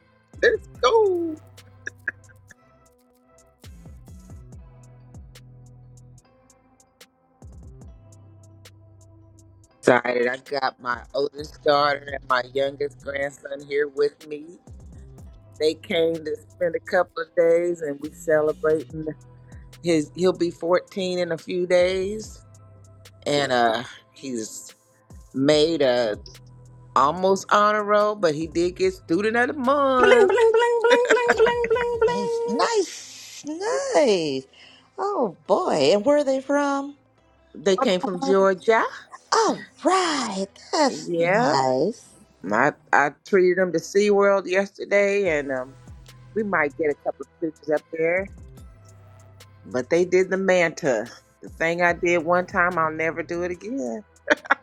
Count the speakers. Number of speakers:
three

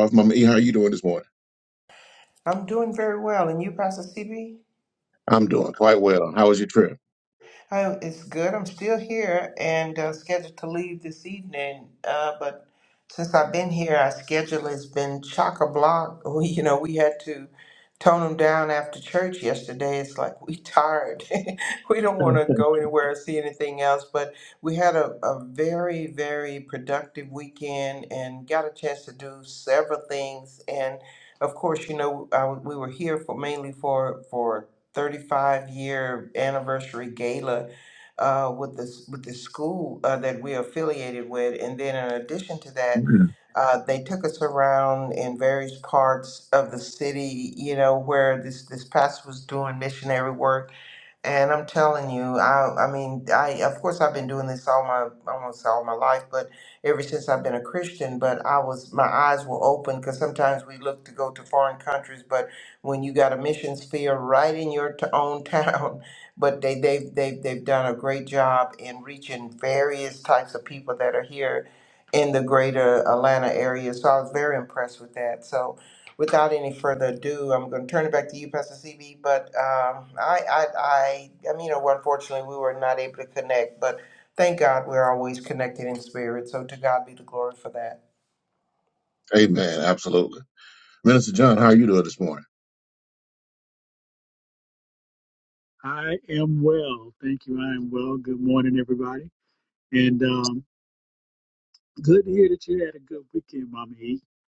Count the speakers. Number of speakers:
three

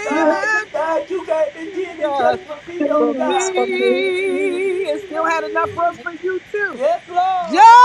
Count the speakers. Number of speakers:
three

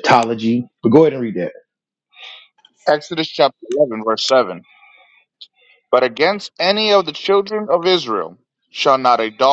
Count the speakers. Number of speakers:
two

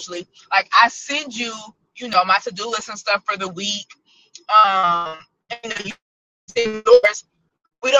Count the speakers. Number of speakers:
one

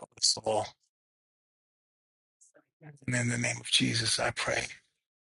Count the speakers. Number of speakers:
one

